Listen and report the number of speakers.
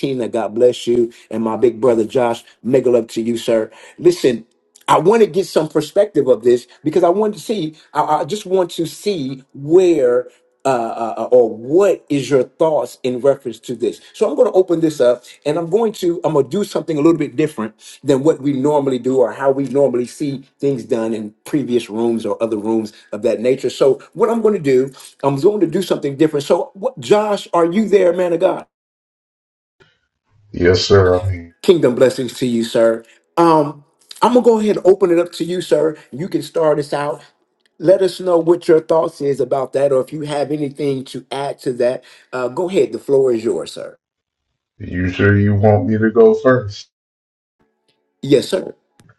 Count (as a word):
two